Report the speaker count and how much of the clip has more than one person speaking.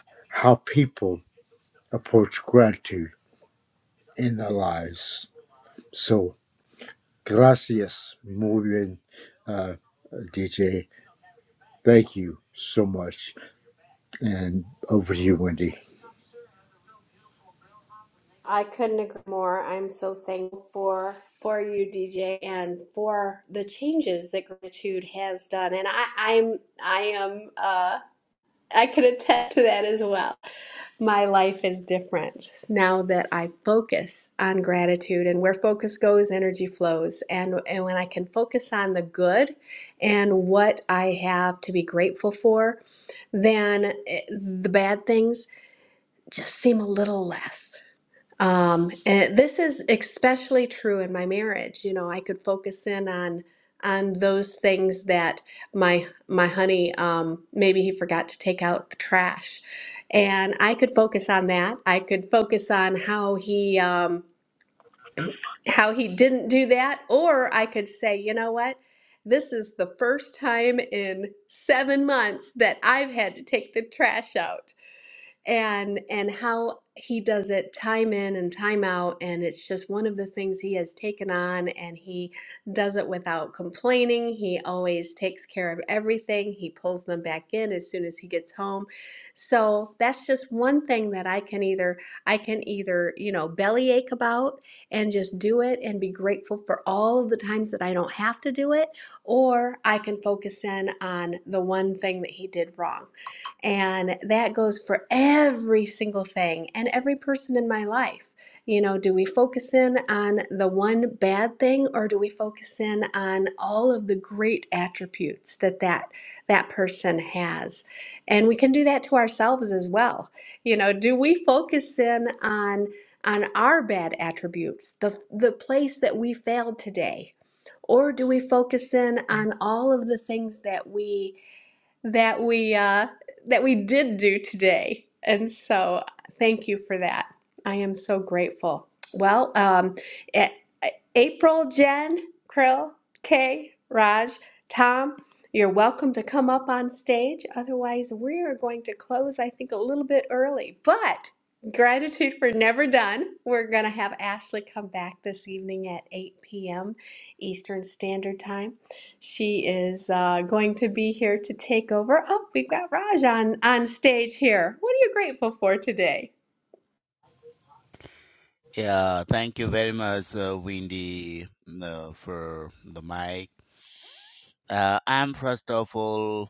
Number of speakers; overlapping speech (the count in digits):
3, no overlap